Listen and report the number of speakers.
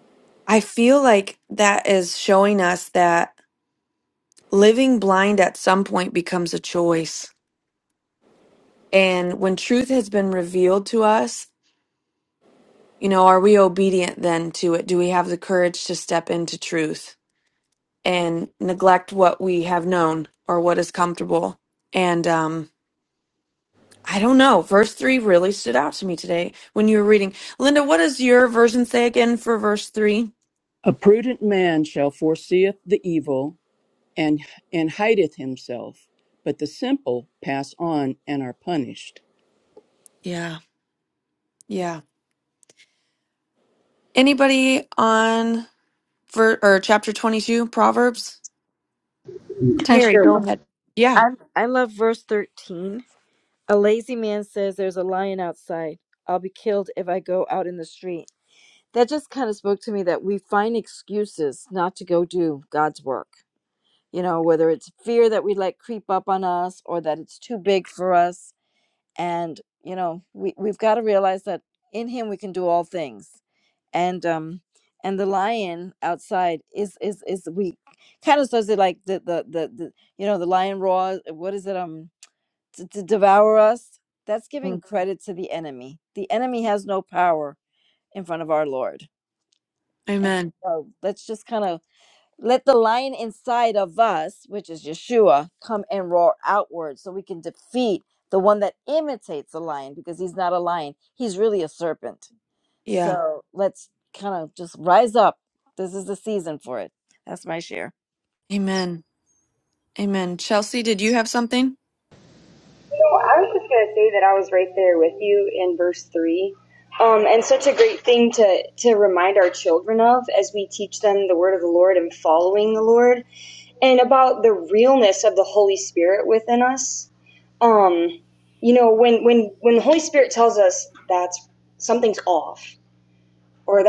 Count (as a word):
four